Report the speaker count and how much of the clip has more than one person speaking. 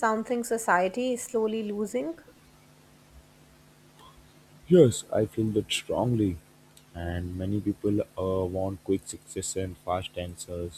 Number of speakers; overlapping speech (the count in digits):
2, no overlap